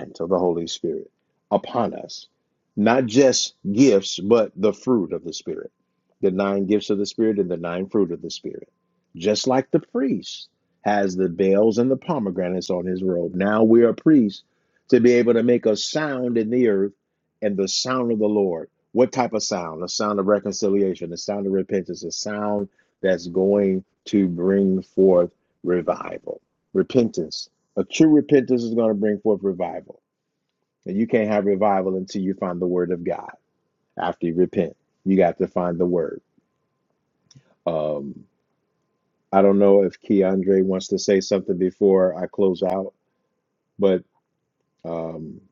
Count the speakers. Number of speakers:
1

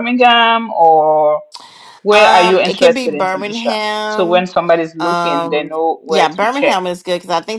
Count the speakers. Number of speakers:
2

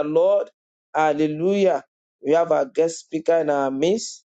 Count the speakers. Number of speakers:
1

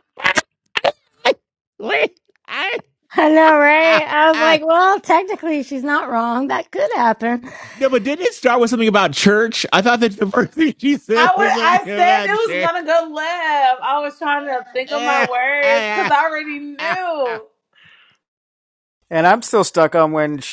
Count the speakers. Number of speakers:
4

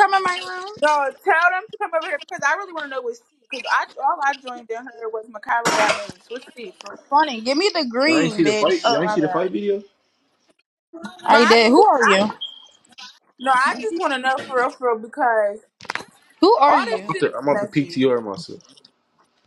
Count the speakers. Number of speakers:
3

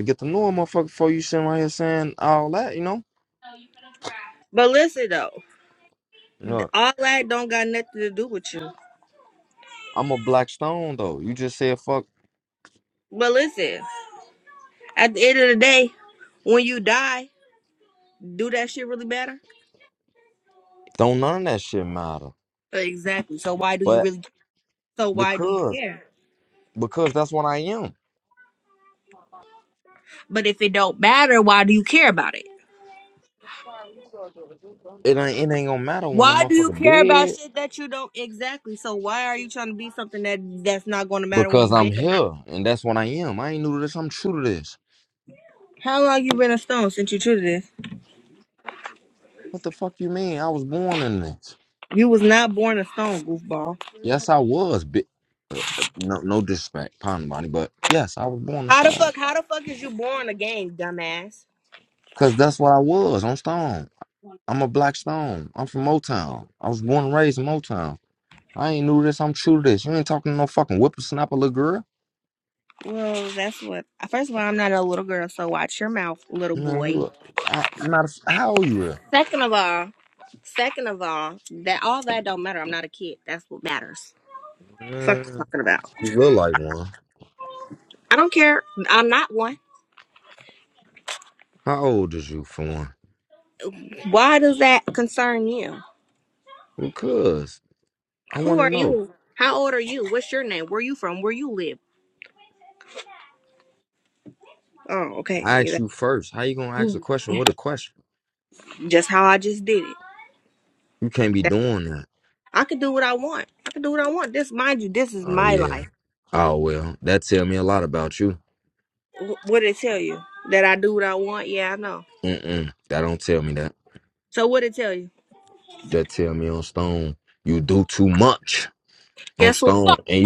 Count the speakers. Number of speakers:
2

